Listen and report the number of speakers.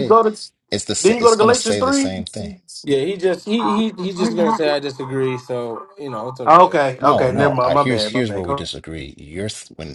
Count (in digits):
3